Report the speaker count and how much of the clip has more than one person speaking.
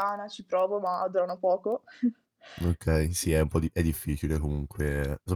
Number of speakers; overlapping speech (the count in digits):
2, no overlap